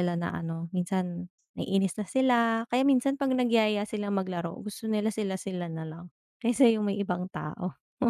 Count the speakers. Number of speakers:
one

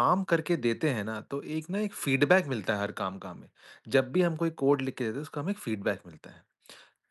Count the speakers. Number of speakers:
one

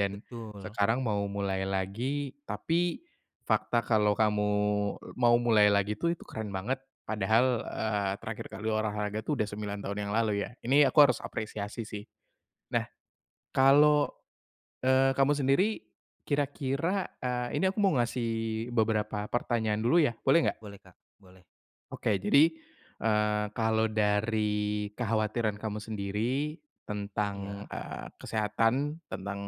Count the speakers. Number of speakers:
two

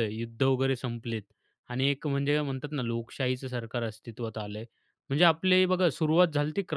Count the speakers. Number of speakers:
one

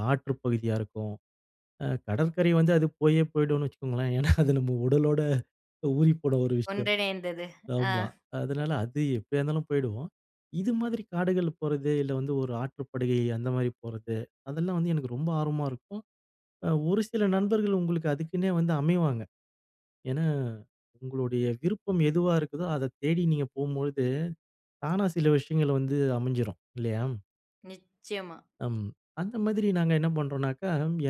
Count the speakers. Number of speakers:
two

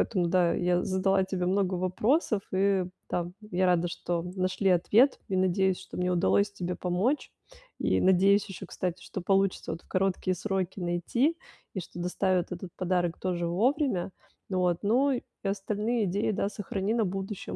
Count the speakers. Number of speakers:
one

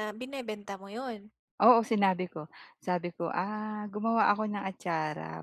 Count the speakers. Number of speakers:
two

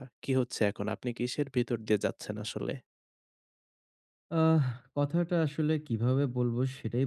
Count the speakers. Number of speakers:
two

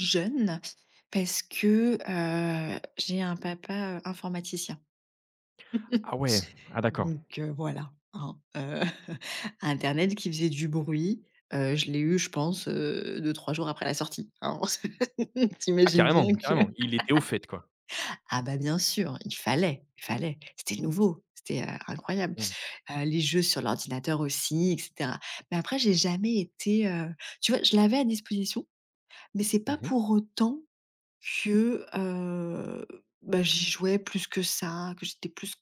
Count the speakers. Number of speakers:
two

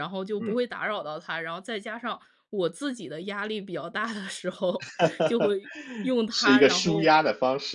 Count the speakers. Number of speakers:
two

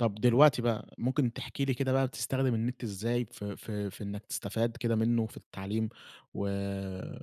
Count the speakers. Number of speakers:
one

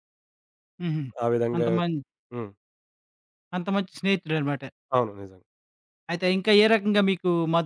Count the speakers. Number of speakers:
two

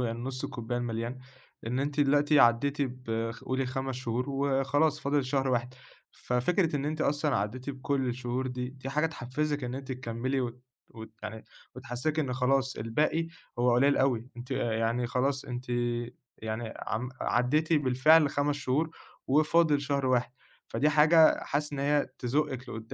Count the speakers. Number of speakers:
one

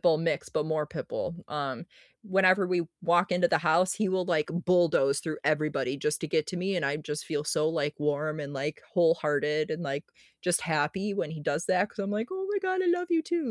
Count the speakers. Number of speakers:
one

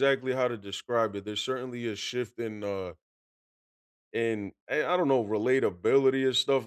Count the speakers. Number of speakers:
one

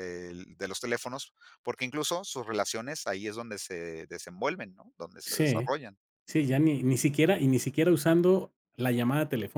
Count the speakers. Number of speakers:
two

